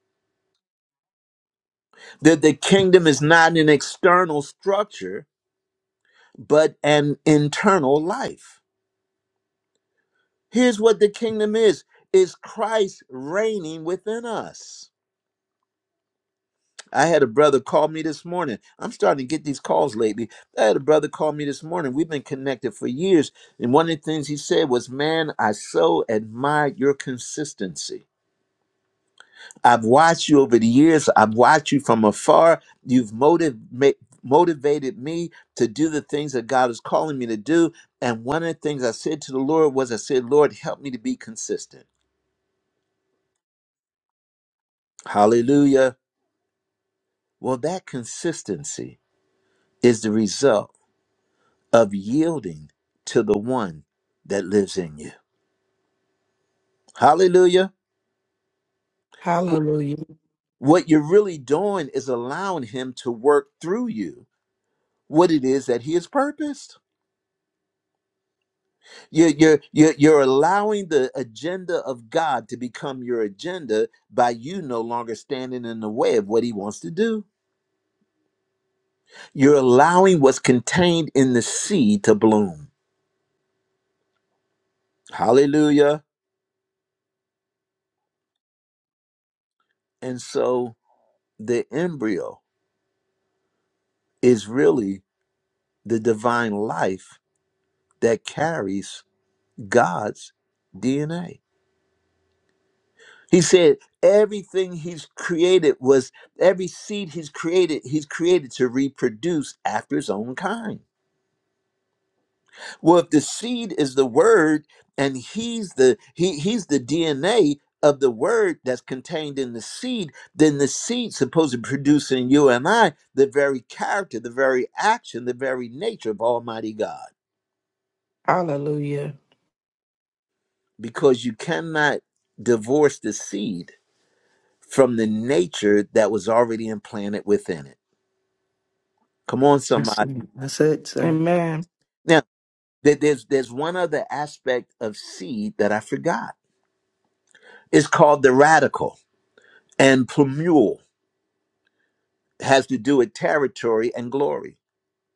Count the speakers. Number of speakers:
3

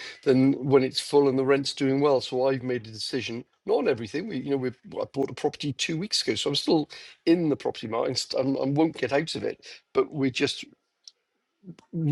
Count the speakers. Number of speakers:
1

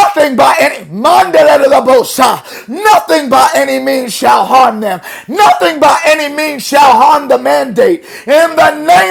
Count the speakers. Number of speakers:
1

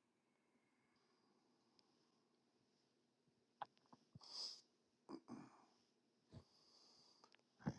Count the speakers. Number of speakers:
0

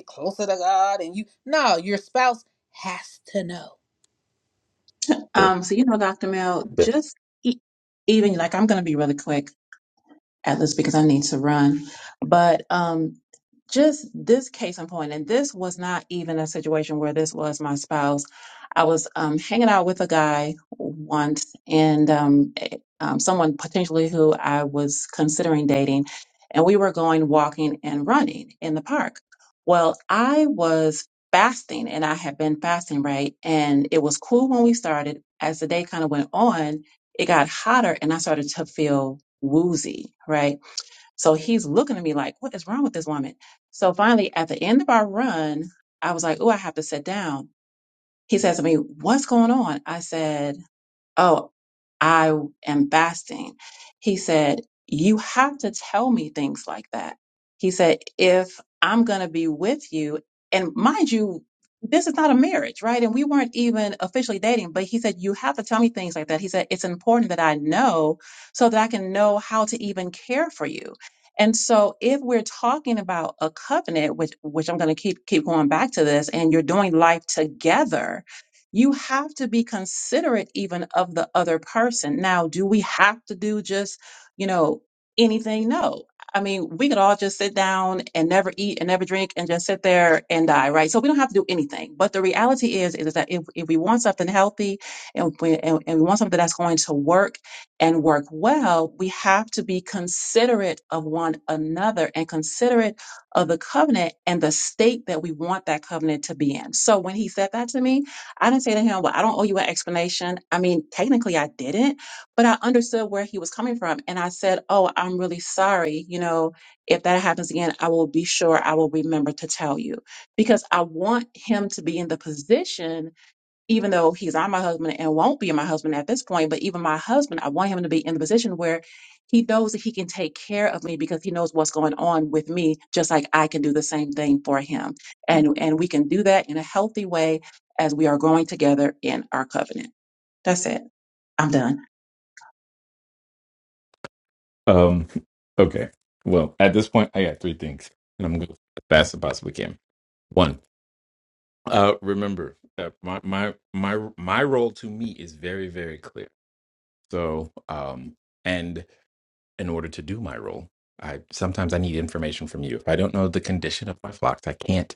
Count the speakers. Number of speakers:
3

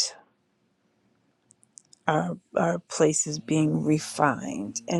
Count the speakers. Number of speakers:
1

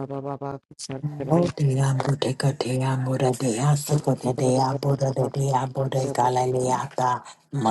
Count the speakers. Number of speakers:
2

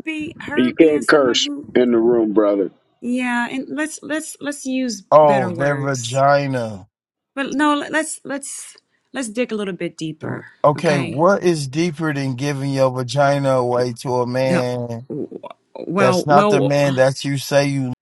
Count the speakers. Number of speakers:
3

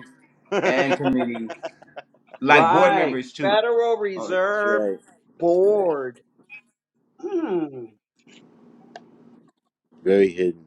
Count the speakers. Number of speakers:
3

